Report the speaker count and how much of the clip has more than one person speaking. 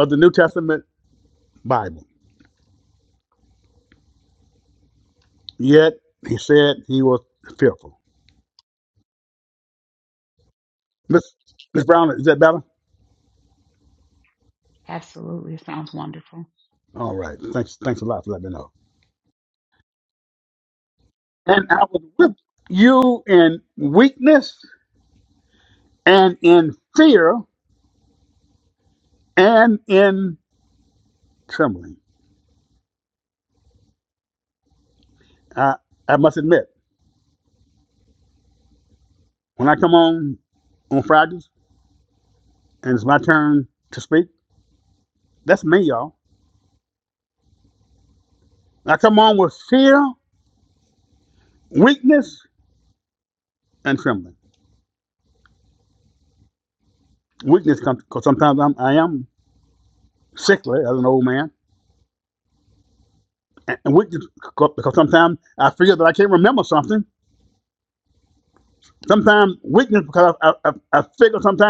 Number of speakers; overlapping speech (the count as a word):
two, no overlap